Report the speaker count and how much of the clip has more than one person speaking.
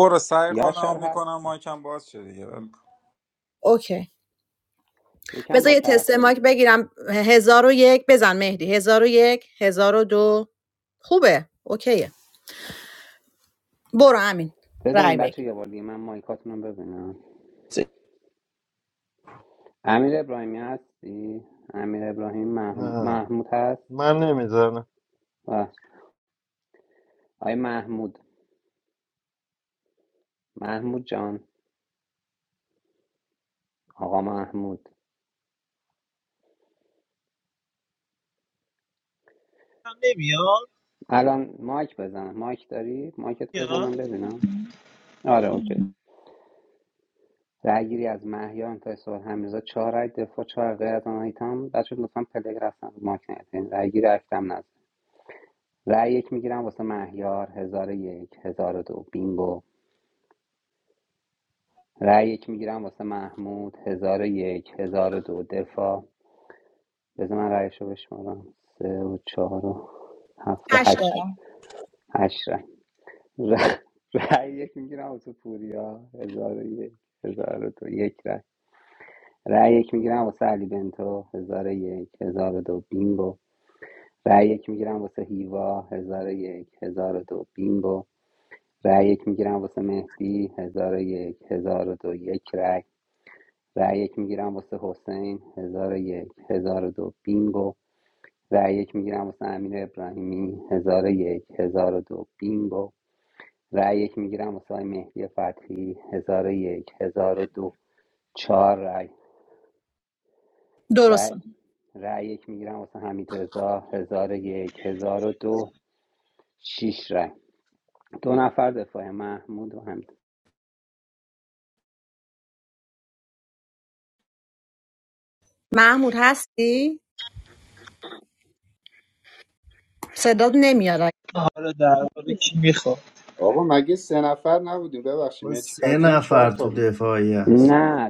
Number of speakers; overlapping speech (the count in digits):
7, about 4%